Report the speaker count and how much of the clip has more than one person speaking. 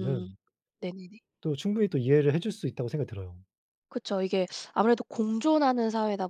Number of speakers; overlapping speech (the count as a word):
two, about 4%